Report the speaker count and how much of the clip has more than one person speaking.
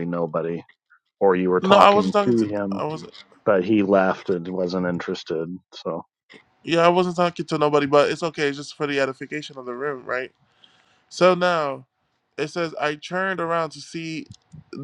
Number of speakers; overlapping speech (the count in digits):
2, about 8%